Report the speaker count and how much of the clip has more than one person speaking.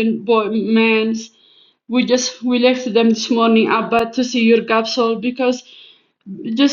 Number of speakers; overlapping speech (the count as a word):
one, no overlap